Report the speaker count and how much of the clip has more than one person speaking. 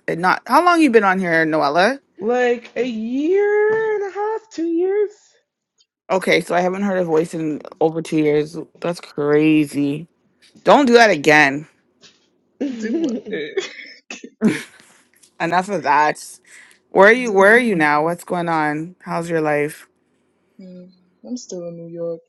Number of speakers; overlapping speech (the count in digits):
3, about 6%